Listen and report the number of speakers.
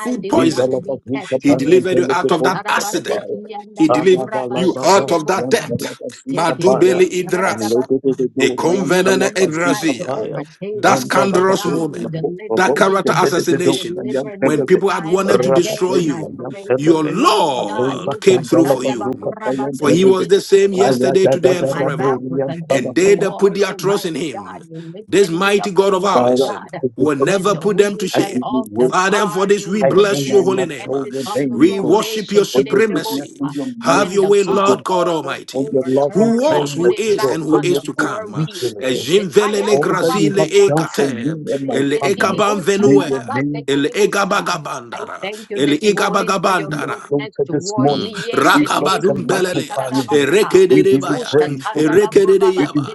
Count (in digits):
3